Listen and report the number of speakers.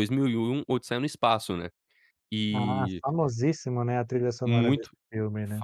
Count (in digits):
2